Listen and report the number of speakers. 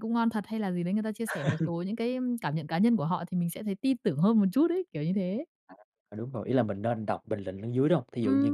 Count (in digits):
2